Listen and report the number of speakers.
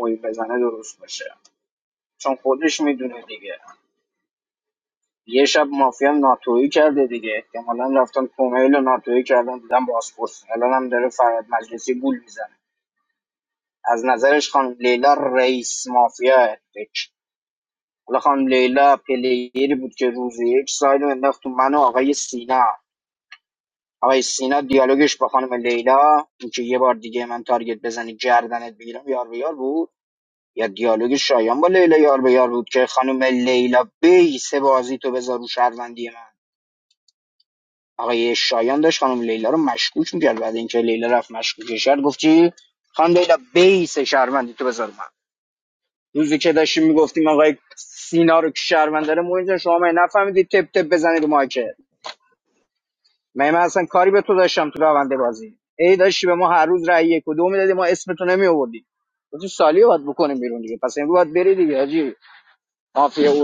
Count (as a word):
one